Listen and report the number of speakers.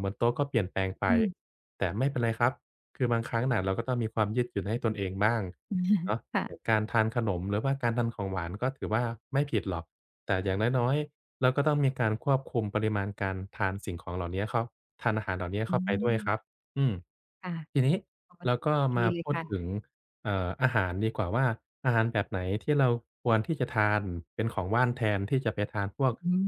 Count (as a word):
two